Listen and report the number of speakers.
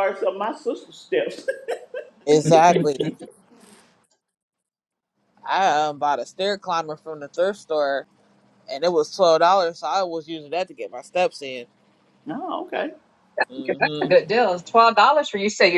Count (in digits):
3